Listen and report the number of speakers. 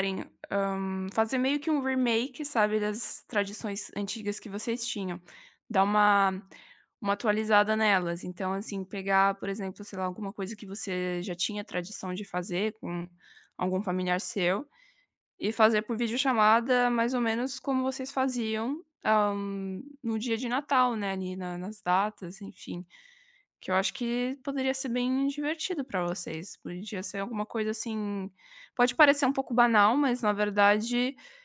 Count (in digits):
1